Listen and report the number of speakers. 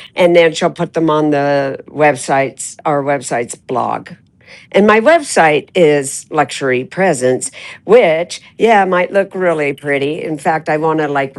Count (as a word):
one